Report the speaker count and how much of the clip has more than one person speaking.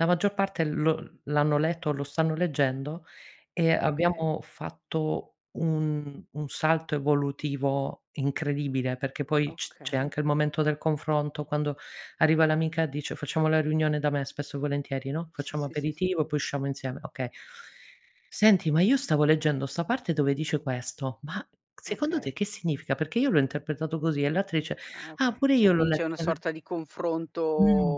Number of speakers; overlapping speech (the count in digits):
2, about 11%